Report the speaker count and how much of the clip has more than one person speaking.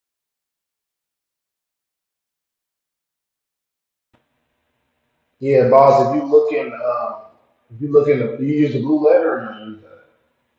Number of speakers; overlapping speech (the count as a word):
one, no overlap